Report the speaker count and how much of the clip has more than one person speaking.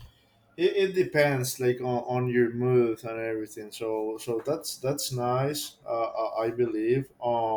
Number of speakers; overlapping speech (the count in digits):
1, no overlap